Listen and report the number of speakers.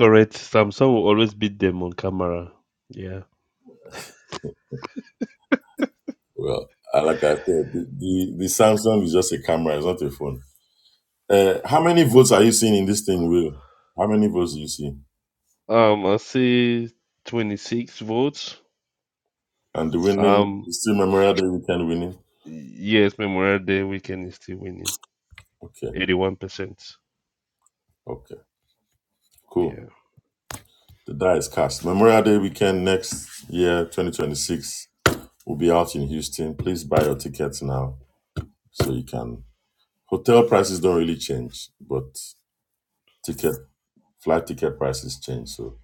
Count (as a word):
two